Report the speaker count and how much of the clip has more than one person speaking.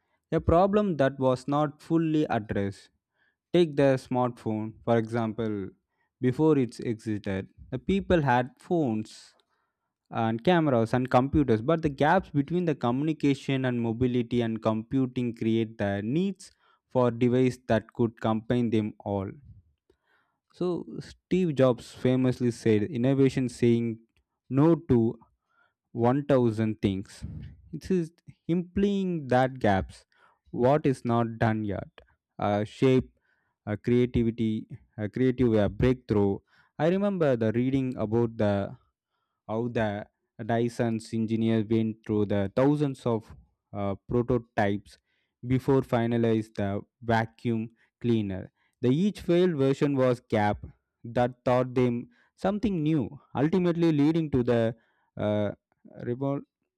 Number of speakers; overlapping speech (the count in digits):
1, no overlap